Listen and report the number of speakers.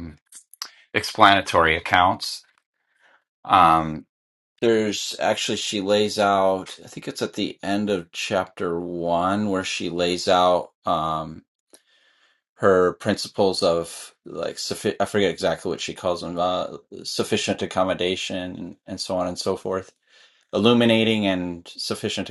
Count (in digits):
1